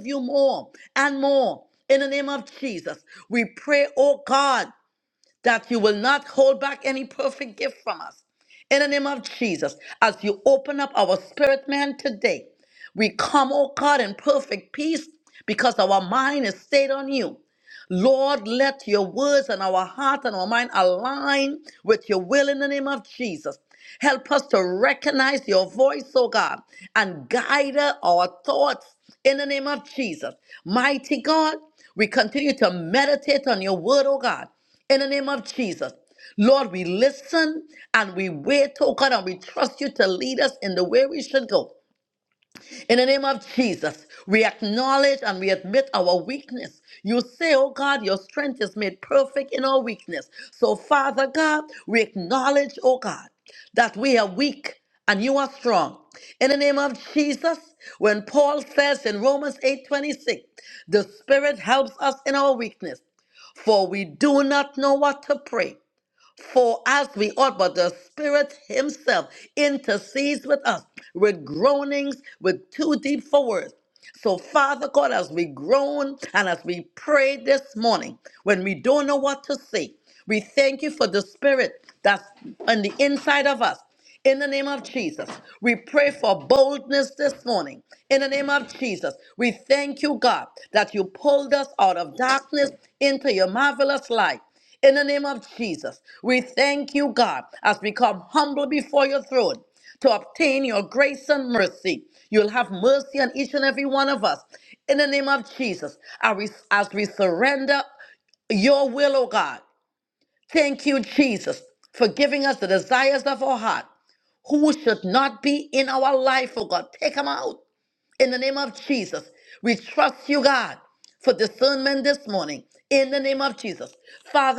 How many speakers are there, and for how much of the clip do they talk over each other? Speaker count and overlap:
1, no overlap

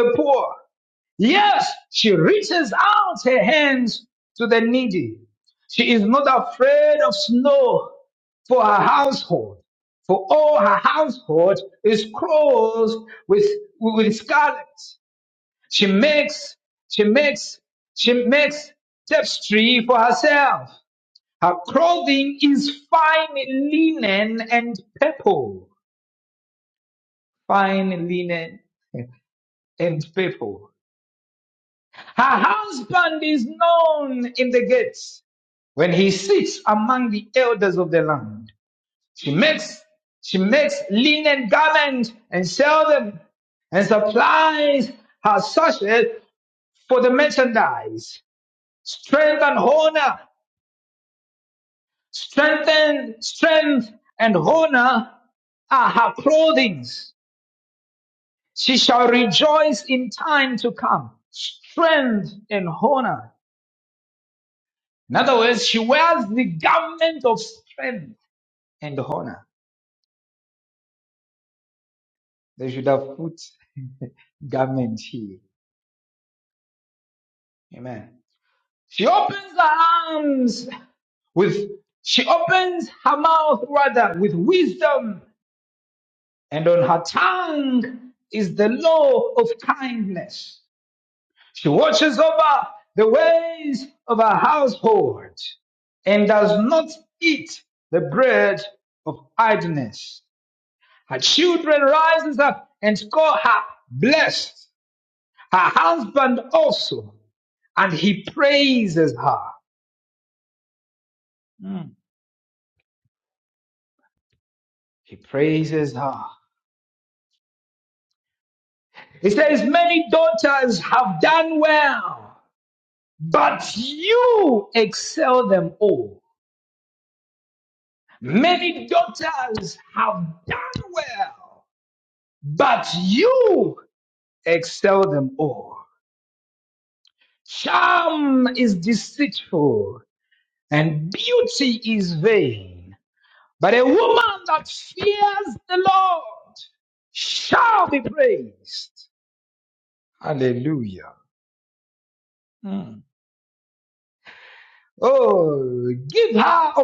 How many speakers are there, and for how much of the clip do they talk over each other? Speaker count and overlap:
1, no overlap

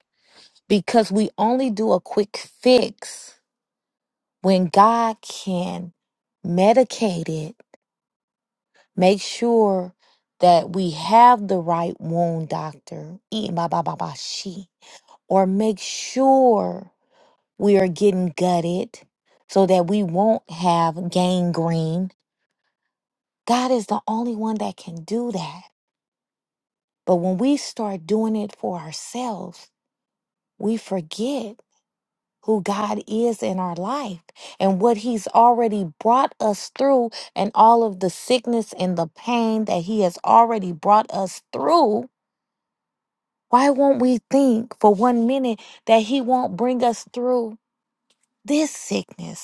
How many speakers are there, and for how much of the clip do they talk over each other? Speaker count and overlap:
1, no overlap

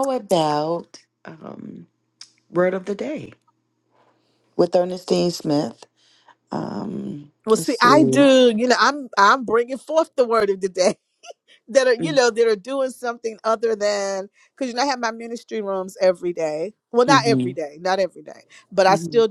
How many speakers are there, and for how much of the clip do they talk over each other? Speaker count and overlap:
2, about 8%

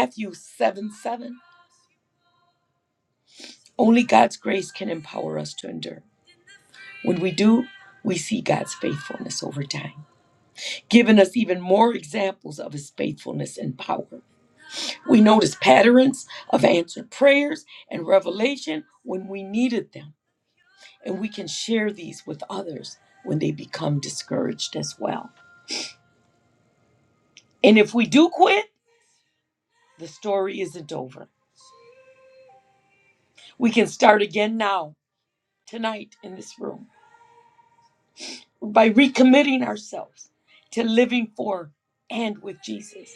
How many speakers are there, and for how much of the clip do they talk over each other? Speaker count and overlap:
1, no overlap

